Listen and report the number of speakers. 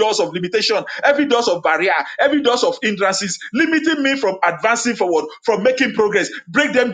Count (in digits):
1